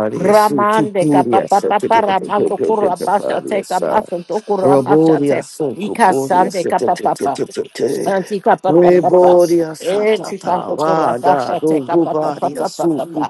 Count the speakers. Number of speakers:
two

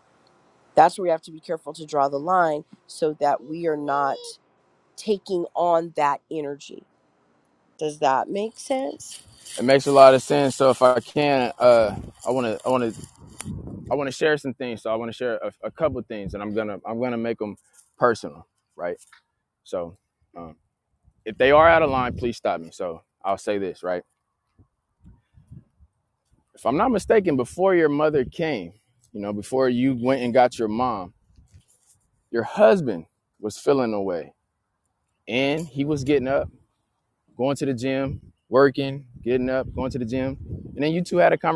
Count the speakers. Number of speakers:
two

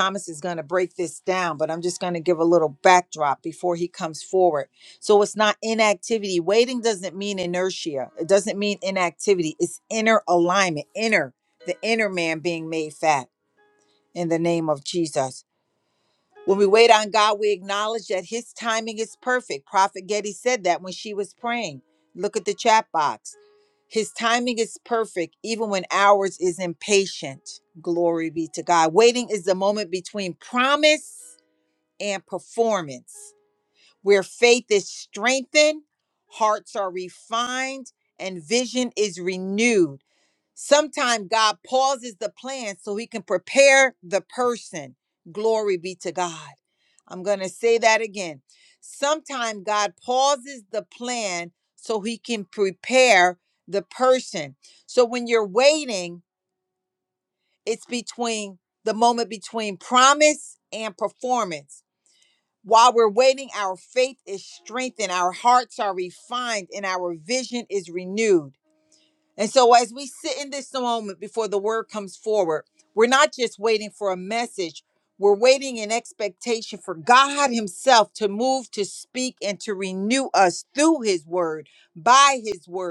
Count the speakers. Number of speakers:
one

